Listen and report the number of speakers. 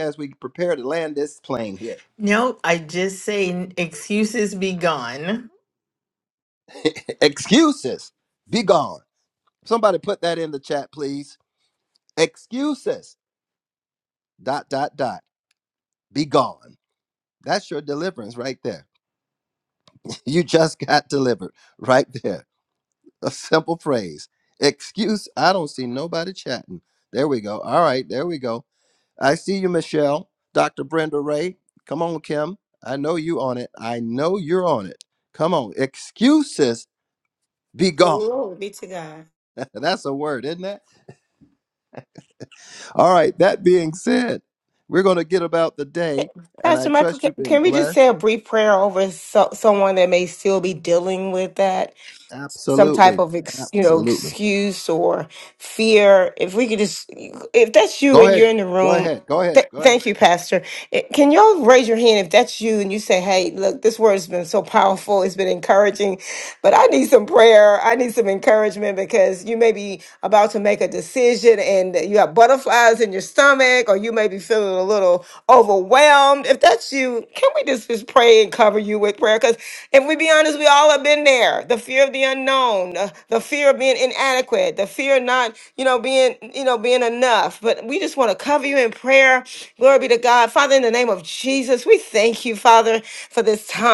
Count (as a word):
three